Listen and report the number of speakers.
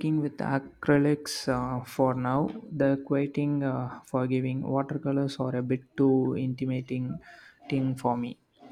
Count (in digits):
1